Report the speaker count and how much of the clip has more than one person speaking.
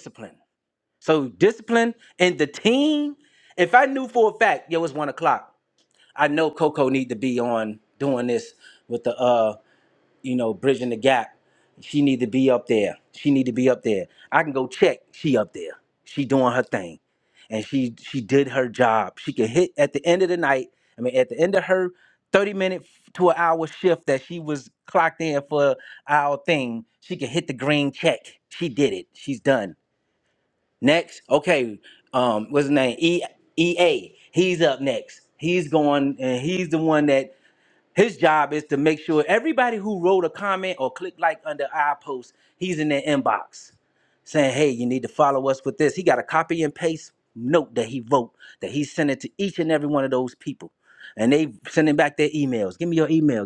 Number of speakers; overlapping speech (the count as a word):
one, no overlap